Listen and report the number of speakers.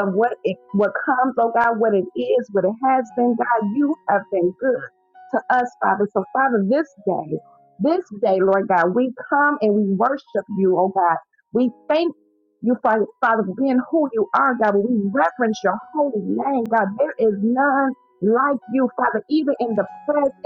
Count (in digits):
1